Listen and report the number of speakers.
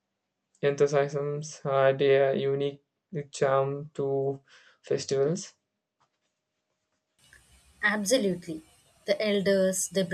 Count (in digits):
2